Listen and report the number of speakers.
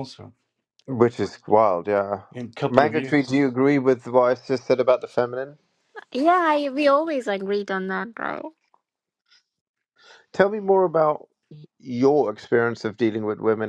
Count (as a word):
three